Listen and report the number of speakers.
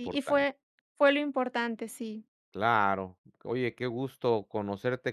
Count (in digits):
2